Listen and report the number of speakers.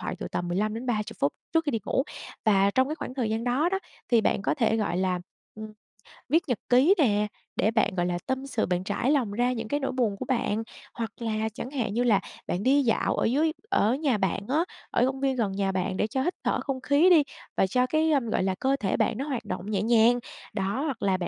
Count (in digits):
1